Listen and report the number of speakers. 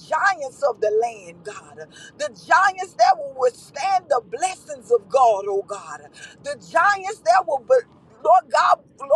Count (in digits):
1